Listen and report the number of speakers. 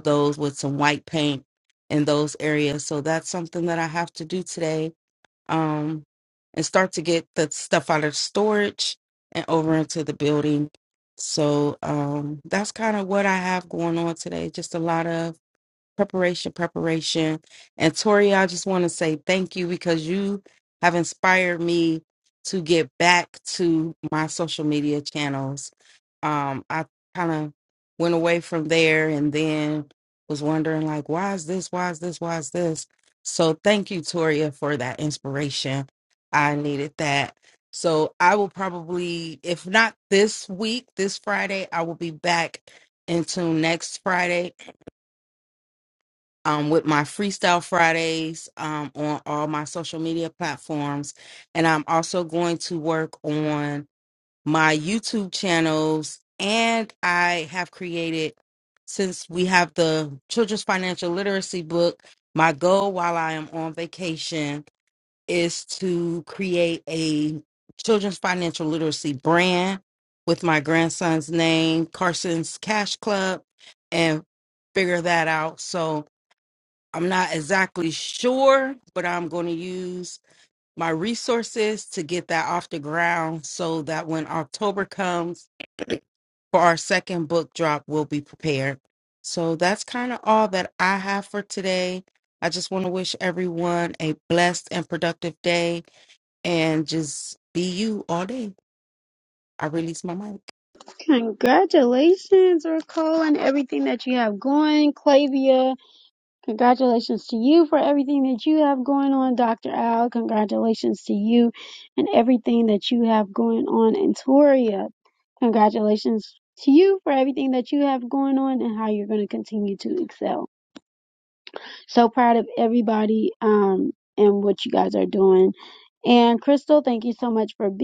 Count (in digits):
2